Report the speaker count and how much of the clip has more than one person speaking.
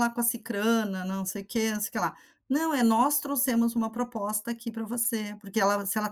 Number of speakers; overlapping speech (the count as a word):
one, no overlap